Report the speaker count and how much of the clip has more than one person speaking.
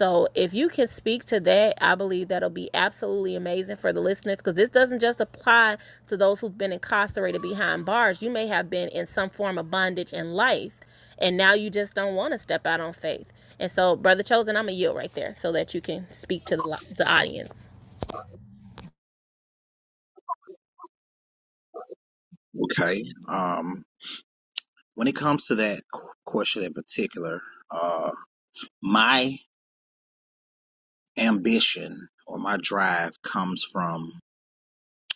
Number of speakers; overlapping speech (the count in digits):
2, no overlap